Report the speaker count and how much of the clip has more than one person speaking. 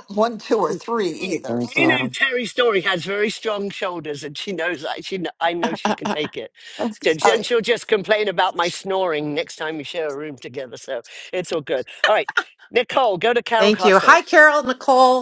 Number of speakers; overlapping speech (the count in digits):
3, about 11%